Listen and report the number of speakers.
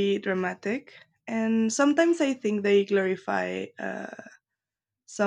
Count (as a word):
one